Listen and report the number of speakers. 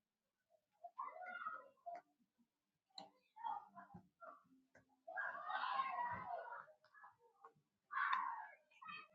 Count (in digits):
0